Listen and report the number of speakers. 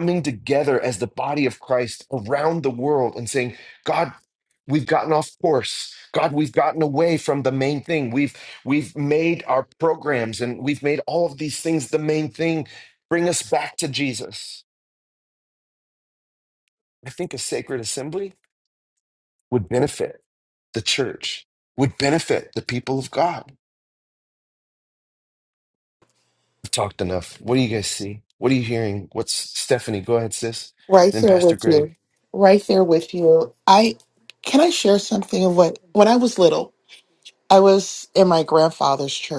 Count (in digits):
2